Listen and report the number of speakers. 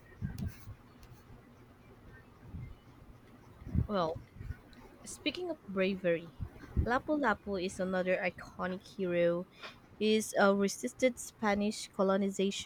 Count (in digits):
1